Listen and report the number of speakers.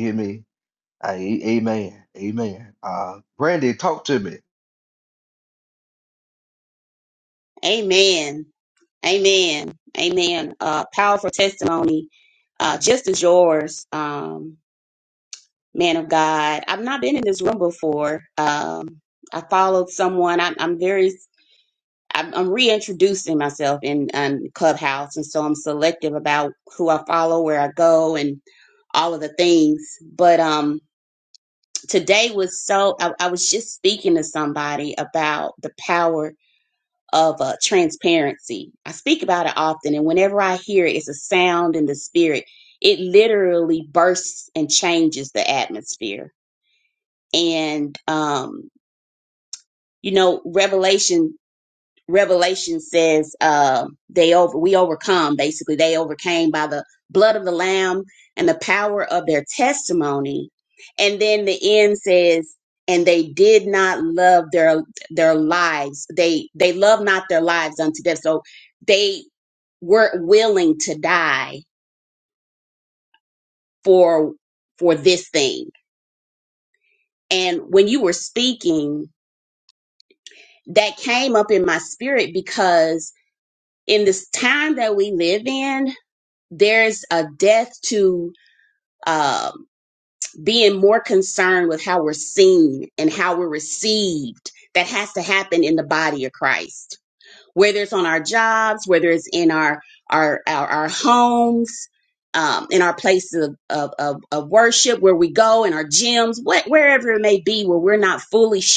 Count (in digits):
2